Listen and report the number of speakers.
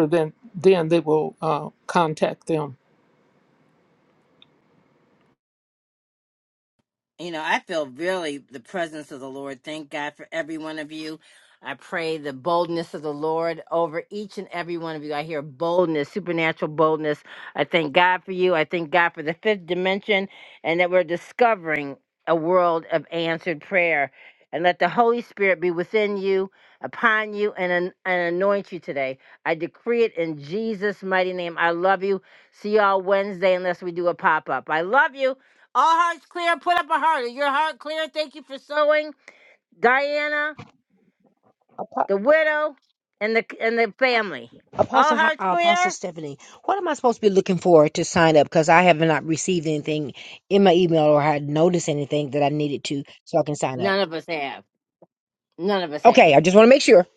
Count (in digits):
3